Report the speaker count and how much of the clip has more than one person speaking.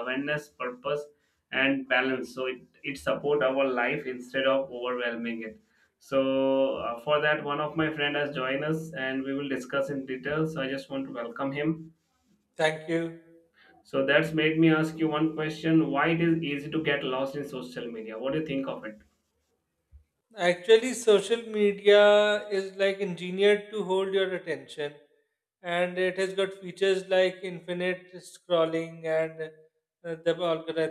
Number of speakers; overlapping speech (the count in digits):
2, no overlap